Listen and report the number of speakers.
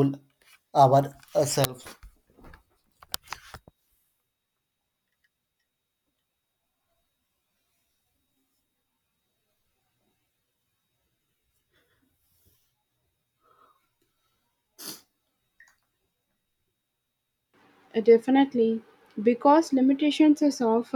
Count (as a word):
two